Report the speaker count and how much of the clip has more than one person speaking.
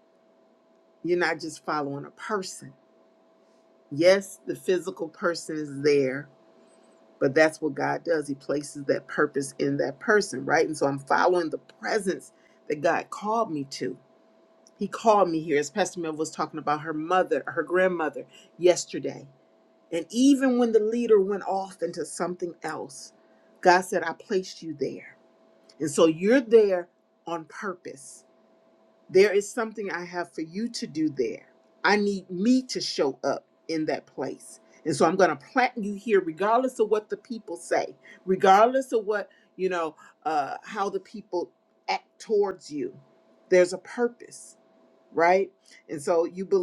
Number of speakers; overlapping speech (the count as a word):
one, no overlap